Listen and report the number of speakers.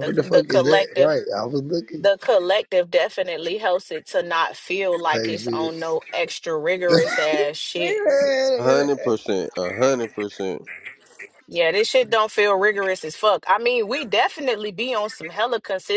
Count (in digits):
3